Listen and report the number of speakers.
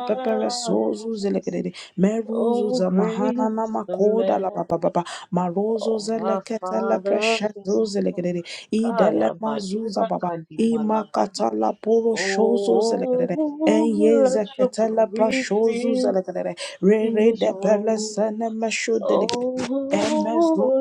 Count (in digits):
2